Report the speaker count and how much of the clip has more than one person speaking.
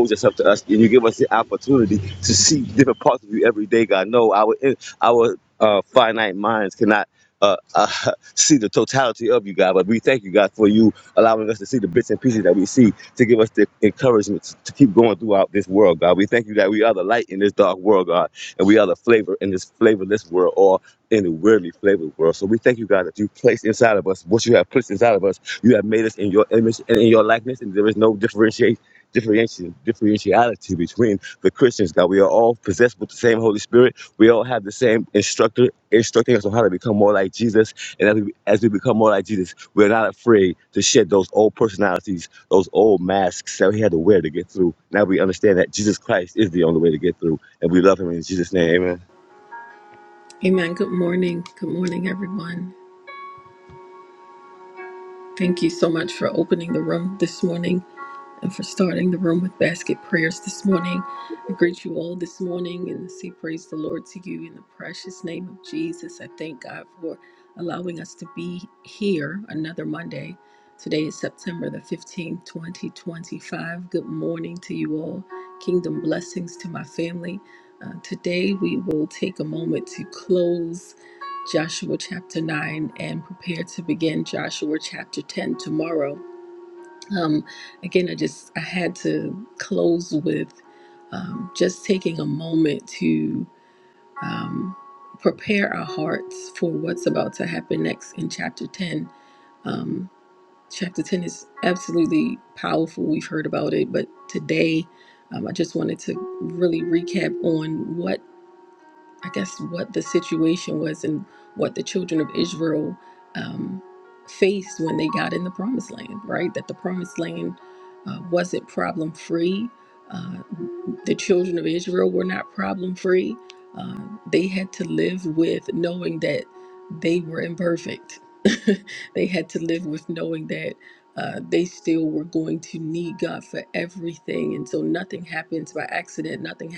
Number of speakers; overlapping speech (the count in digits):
2, no overlap